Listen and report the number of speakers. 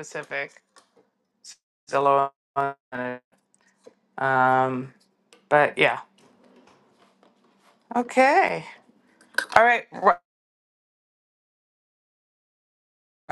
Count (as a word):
one